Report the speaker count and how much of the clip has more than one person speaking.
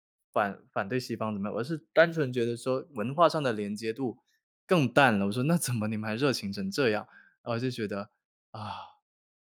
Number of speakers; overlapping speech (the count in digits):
1, no overlap